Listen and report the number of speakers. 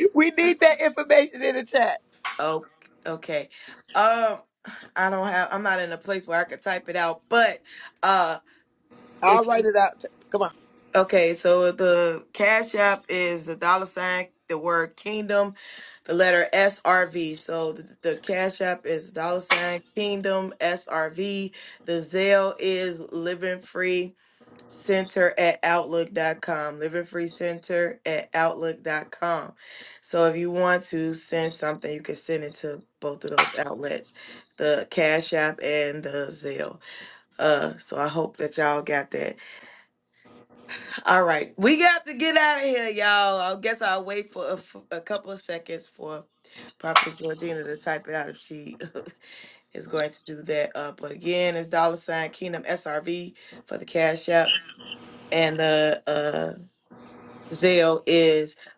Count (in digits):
2